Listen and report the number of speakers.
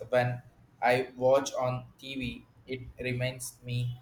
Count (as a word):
one